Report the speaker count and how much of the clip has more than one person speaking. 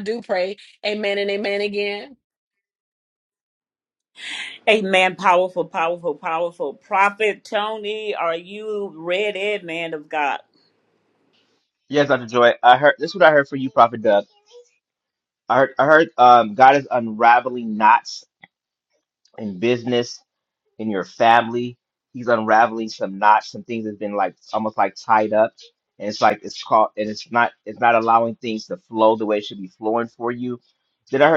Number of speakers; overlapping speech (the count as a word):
three, no overlap